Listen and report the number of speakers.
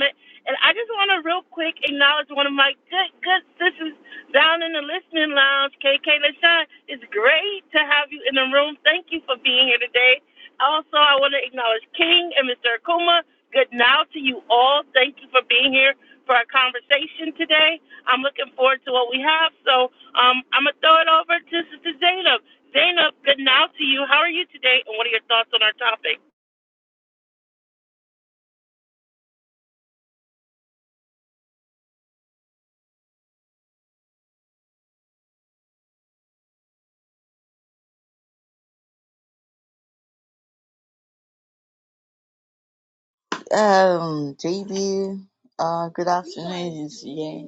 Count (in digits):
2